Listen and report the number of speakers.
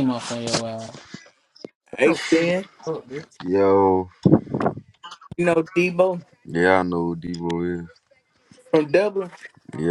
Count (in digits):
3